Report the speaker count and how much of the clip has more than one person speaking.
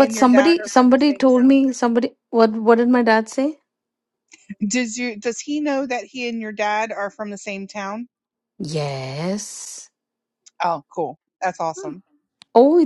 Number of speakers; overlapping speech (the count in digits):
2, about 12%